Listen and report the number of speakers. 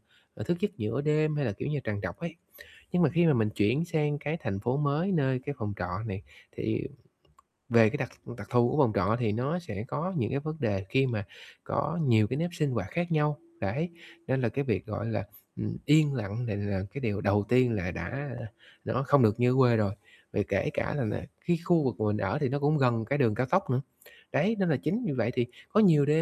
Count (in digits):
1